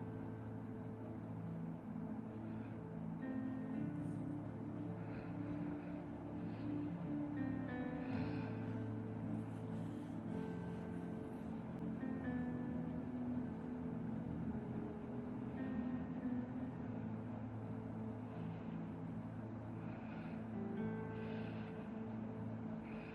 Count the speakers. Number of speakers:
0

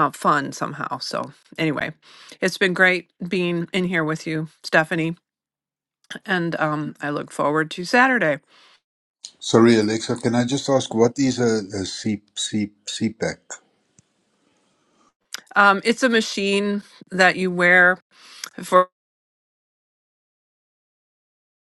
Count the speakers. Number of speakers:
2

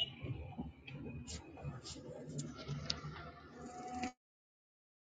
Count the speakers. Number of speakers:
0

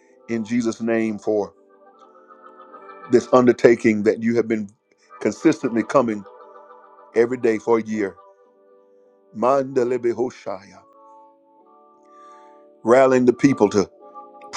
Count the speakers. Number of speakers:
1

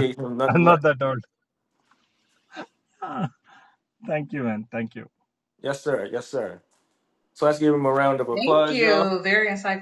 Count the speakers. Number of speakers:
3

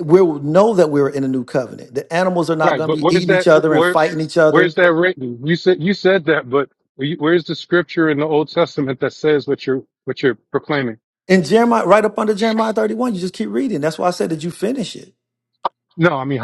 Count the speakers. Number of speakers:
2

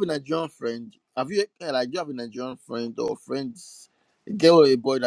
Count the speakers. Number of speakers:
1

